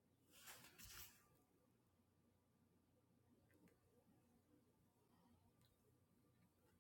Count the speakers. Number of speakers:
zero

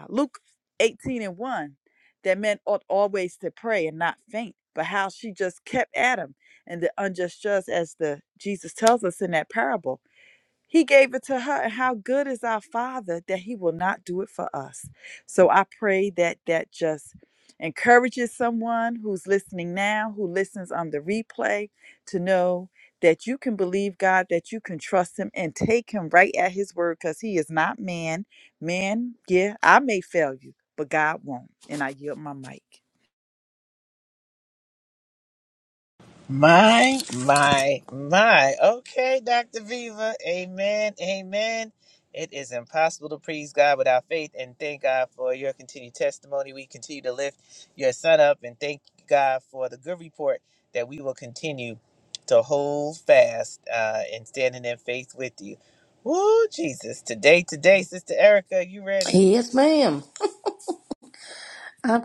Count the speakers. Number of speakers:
three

